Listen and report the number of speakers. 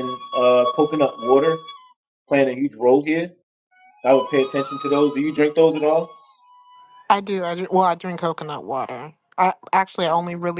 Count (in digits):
2